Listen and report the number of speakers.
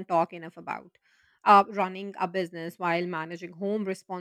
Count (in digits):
1